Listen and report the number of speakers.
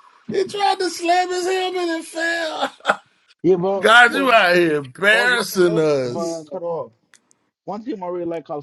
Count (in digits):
2